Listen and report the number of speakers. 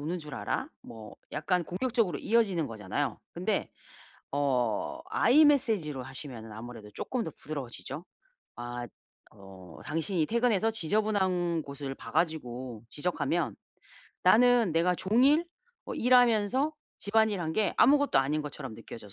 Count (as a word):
one